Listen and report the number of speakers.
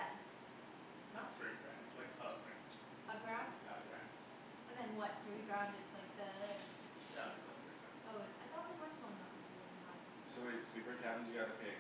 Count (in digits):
3